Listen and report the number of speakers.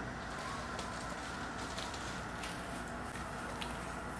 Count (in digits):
0